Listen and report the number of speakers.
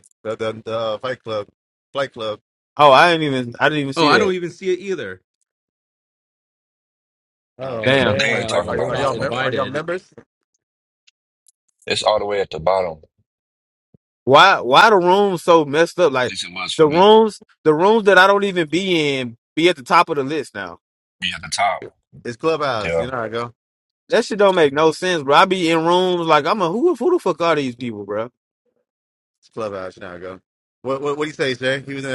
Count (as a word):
four